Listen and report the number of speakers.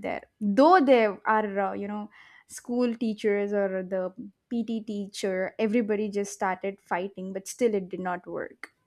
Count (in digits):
1